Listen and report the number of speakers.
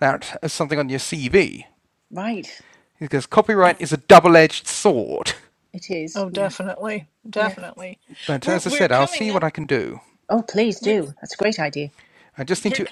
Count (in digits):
3